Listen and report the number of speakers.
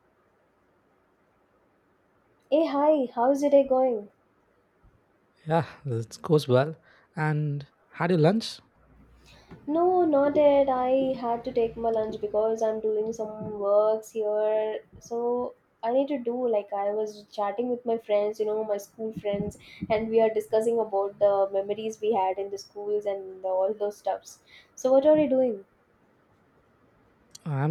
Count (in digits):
2